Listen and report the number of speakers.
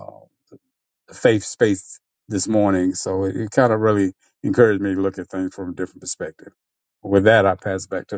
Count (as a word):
one